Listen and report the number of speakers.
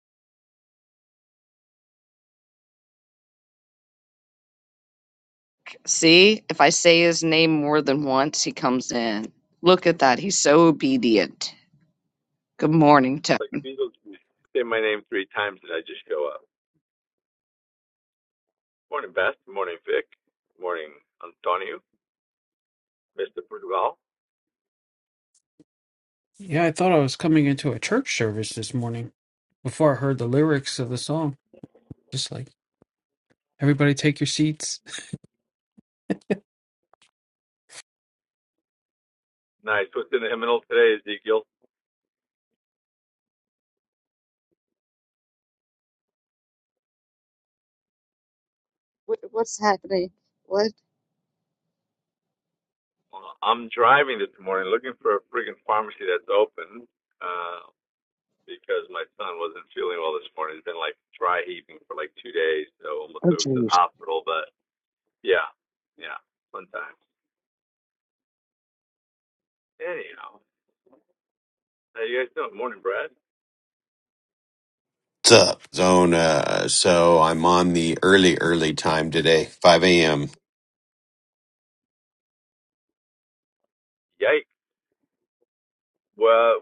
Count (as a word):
four